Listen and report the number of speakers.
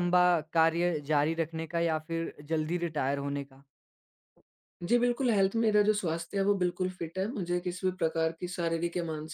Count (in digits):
2